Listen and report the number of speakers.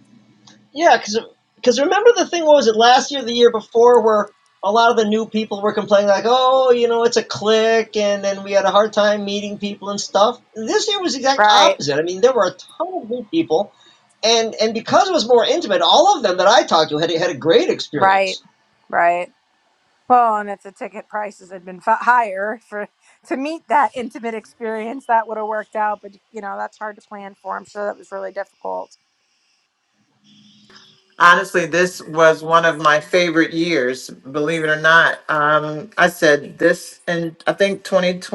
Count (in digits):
3